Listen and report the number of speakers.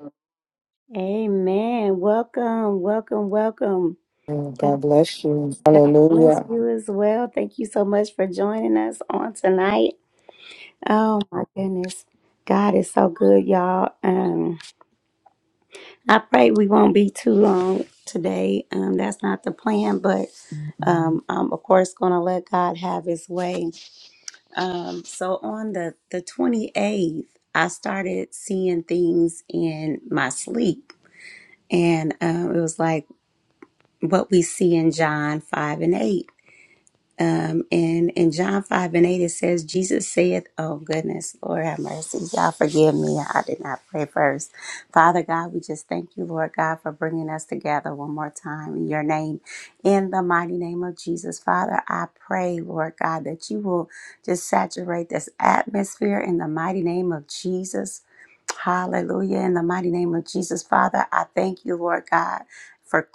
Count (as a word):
two